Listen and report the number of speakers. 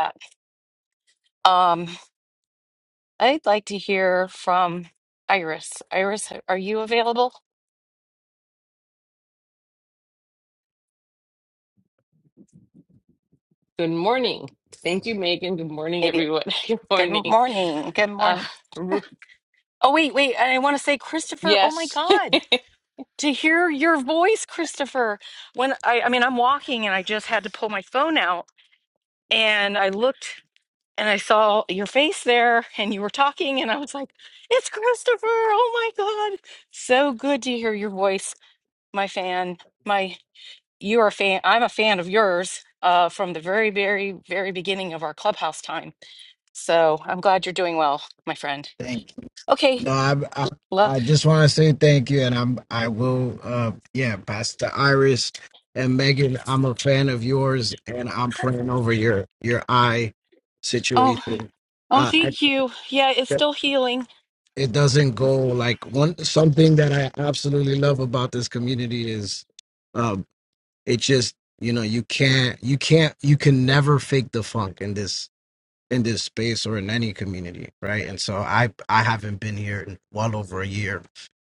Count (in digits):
3